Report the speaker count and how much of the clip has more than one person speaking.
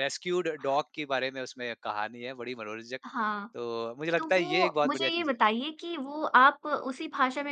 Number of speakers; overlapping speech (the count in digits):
2, about 16%